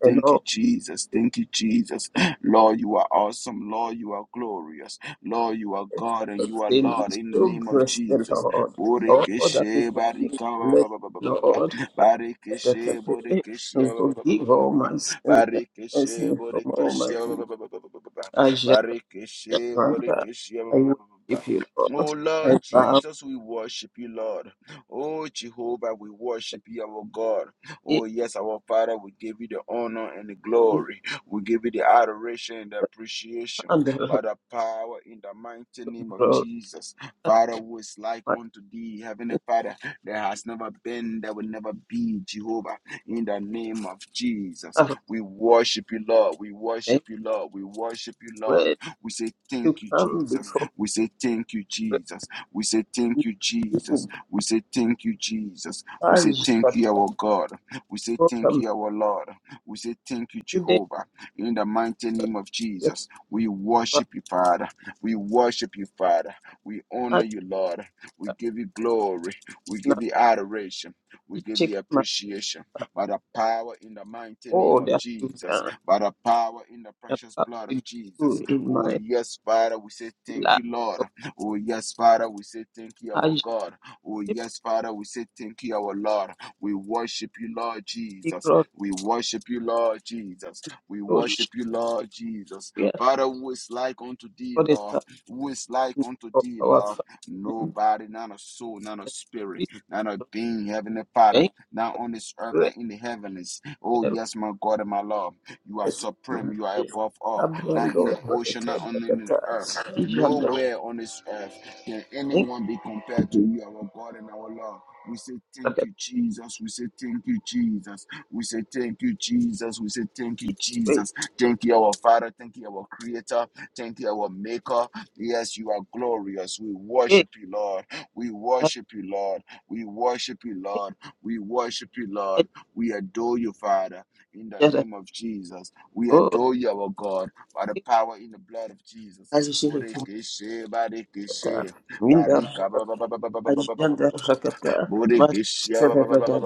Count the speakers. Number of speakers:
two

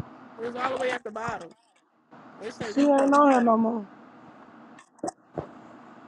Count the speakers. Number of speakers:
two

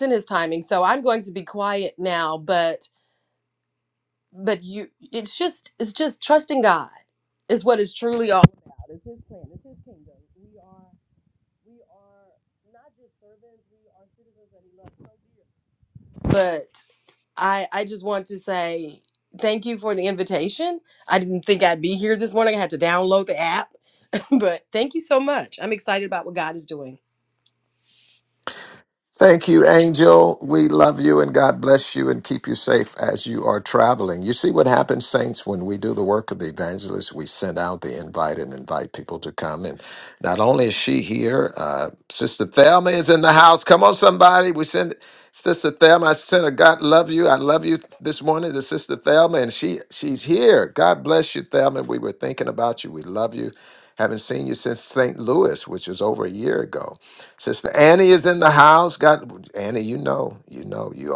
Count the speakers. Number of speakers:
two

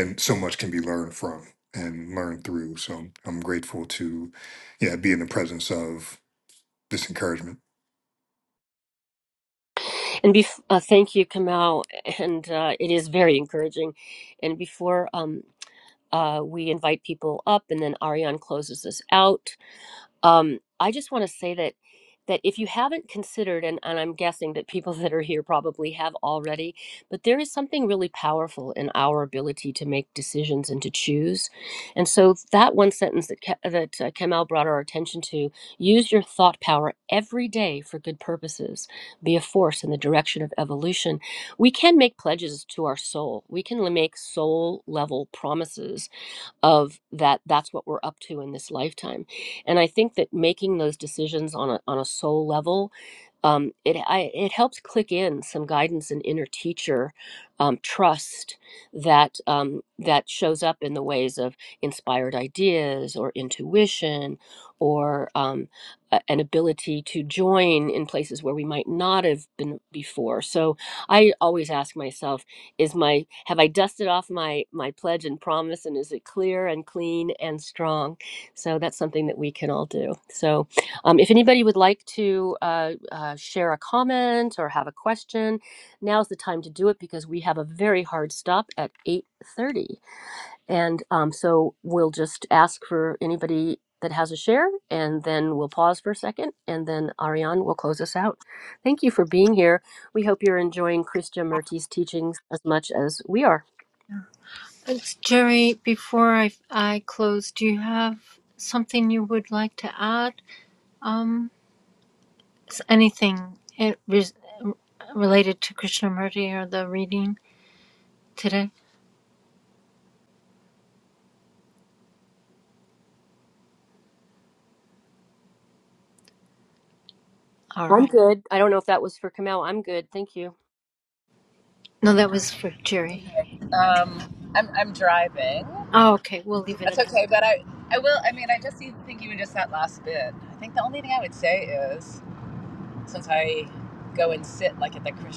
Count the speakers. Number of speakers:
four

